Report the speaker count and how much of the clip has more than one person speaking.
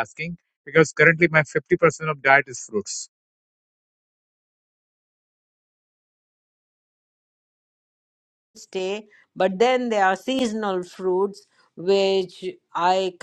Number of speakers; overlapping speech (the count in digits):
2, no overlap